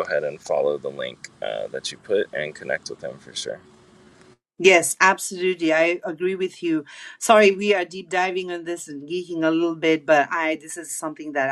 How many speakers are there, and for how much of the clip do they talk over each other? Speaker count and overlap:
two, no overlap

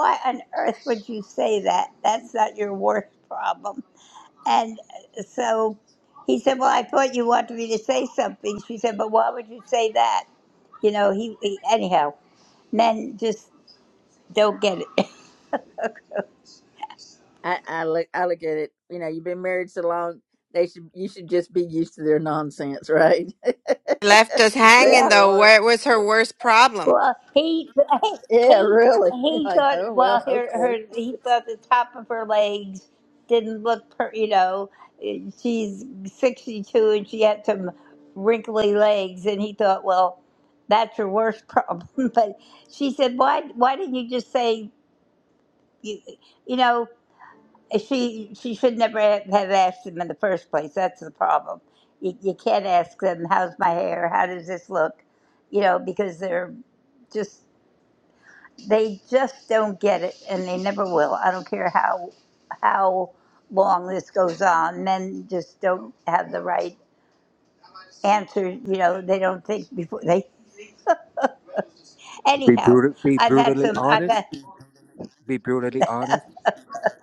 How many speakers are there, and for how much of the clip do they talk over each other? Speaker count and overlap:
four, about 5%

